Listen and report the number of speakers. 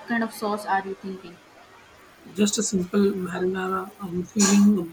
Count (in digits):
2